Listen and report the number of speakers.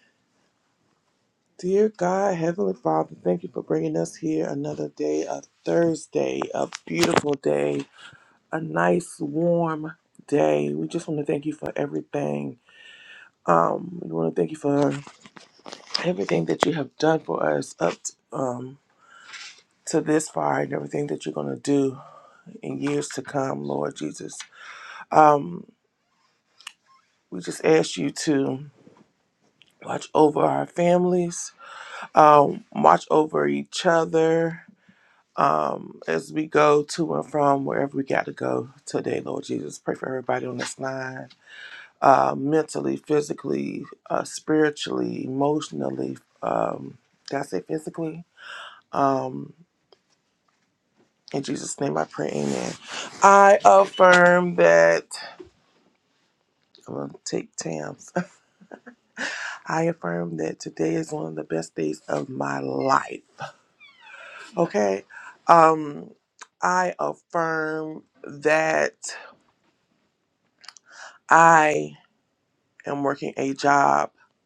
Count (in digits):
1